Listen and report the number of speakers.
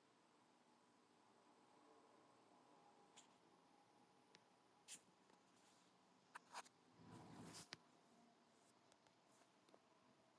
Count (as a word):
zero